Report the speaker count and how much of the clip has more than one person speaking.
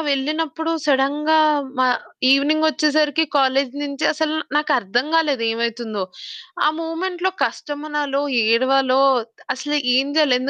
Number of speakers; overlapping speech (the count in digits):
1, no overlap